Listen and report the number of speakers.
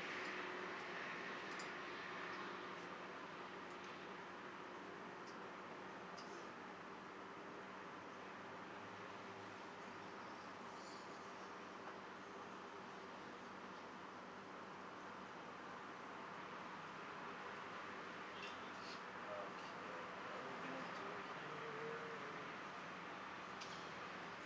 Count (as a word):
one